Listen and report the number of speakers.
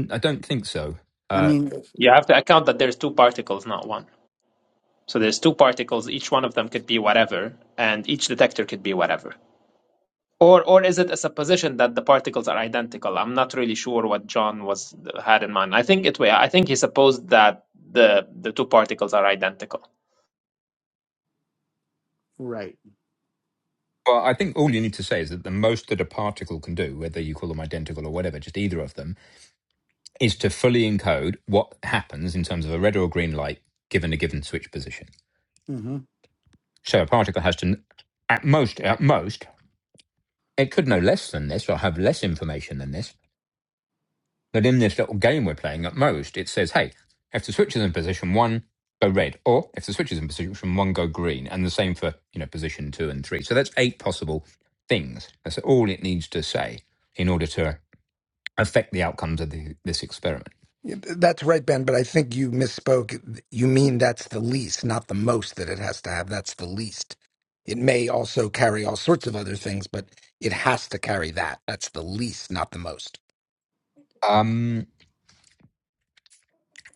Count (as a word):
four